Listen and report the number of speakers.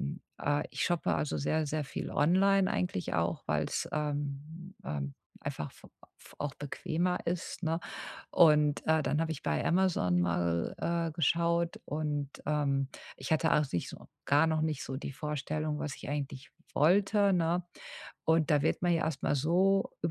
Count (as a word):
one